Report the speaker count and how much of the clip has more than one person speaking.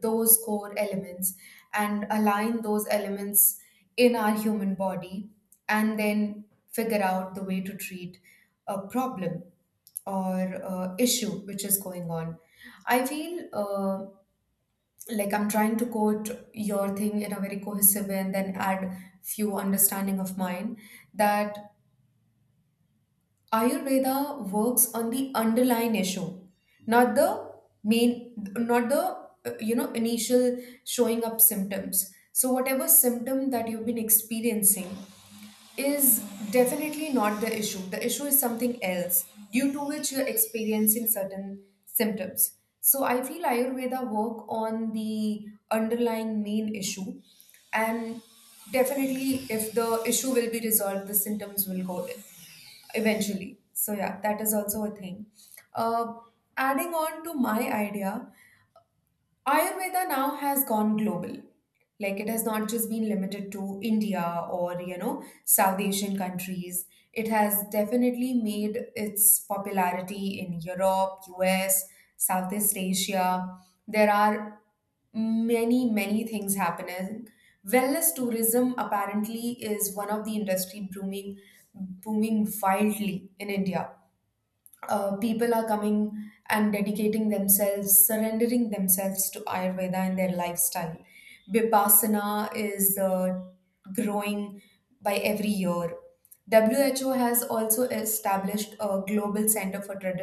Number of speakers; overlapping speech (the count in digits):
1, no overlap